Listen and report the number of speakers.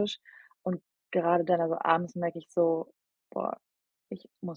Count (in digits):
1